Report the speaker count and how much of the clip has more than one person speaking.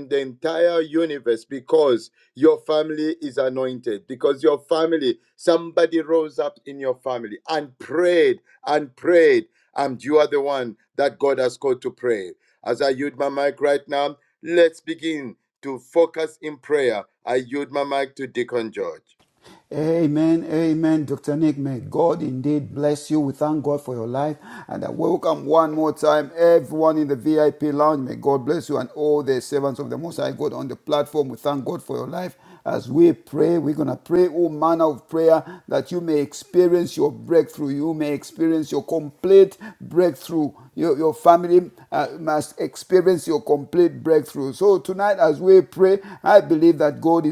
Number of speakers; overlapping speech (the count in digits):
2, no overlap